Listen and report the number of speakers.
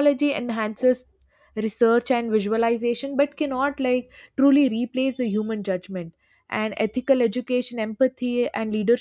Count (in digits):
1